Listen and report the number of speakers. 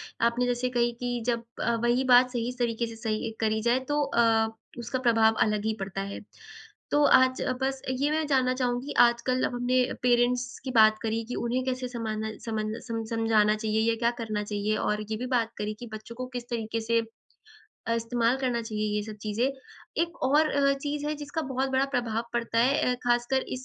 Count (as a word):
one